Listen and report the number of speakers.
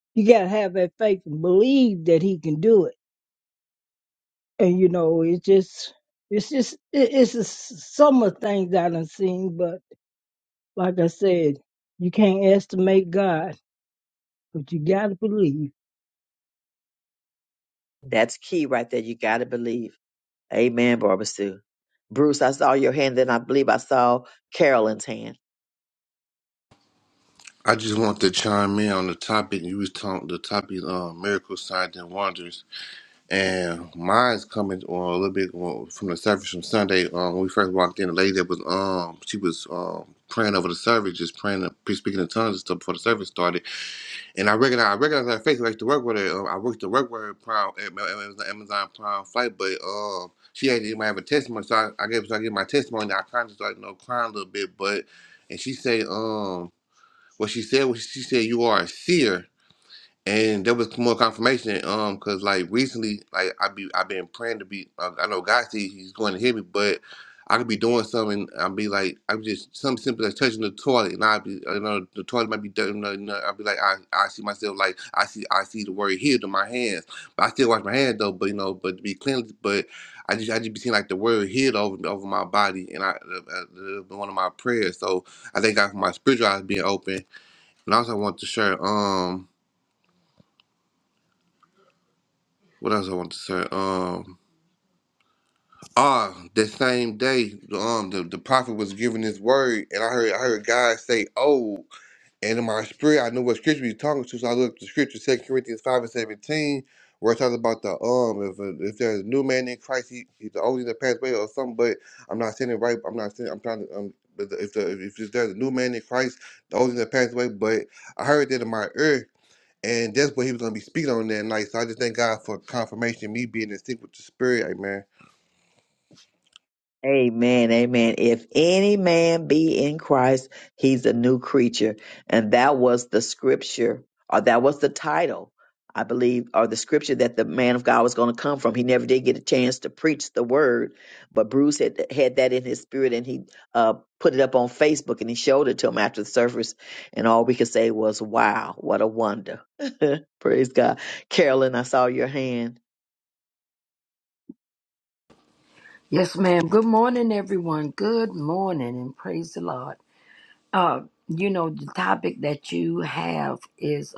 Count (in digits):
4